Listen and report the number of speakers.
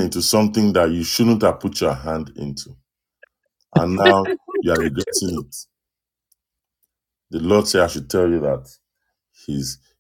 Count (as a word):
one